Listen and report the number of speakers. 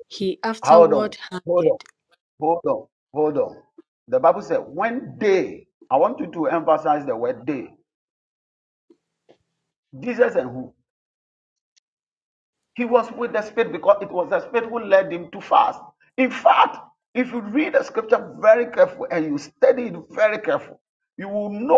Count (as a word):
two